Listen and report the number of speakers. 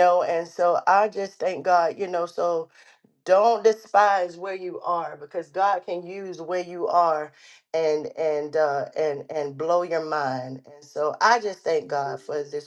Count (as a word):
one